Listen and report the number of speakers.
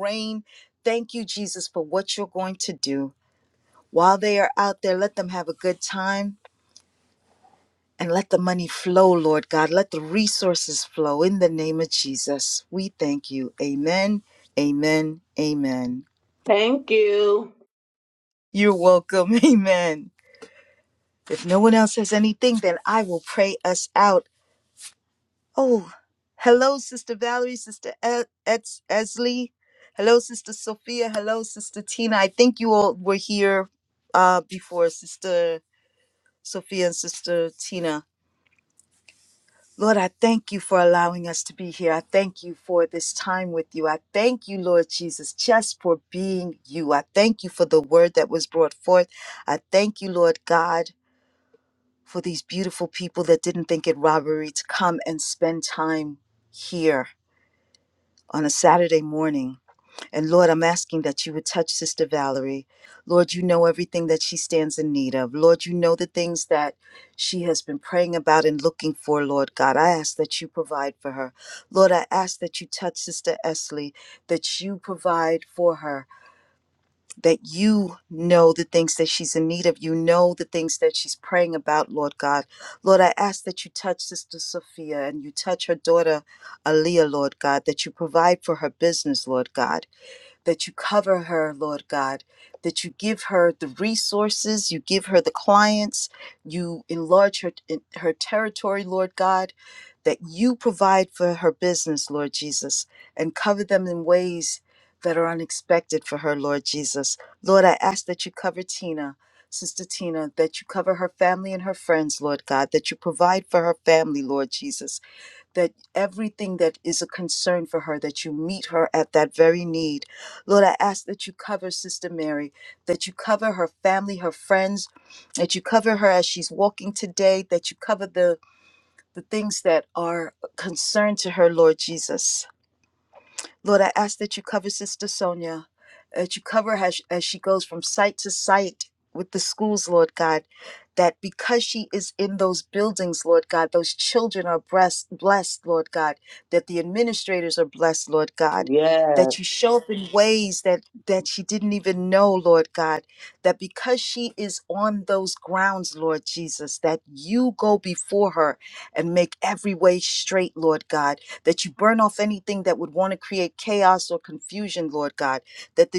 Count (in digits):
2